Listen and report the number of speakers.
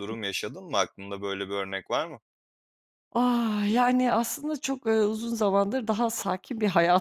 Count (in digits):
2